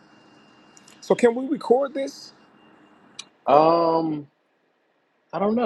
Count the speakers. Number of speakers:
2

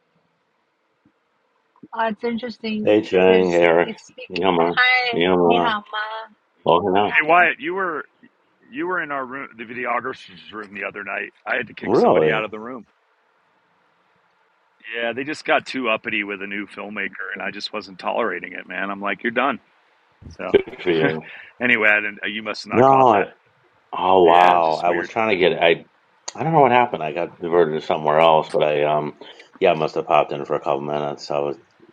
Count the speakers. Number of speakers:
3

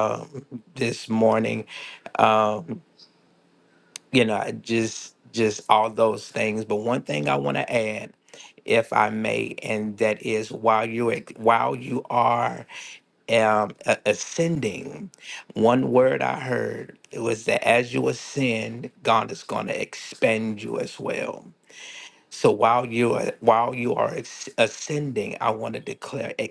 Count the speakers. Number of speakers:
1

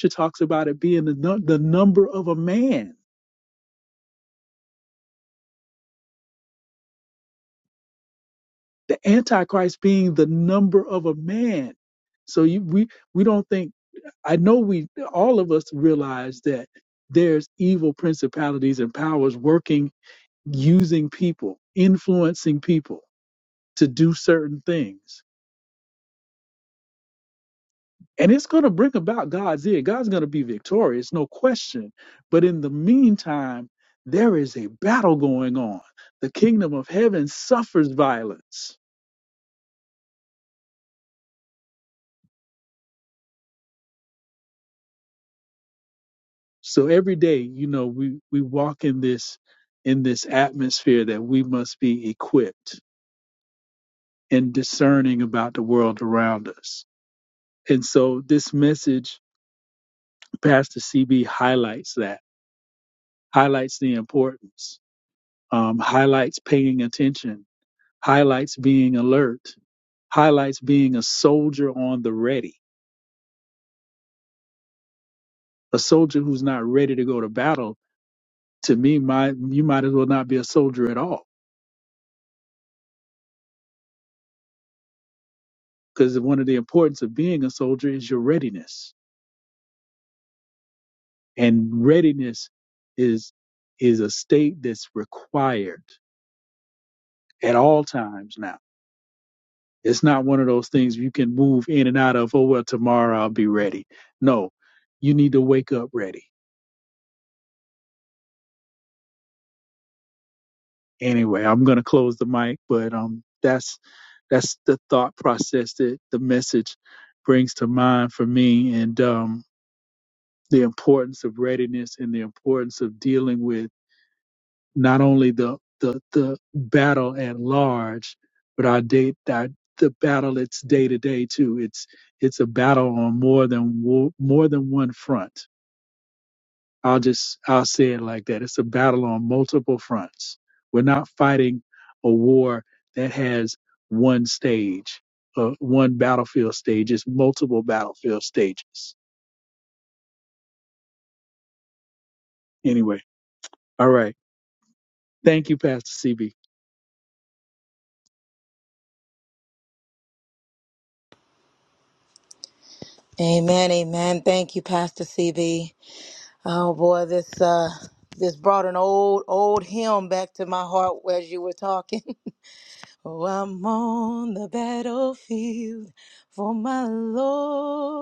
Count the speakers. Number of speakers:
2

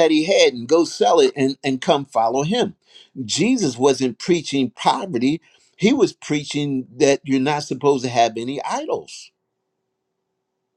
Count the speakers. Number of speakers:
1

